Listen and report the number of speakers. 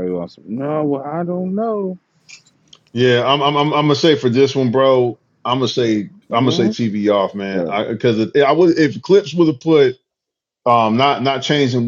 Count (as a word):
two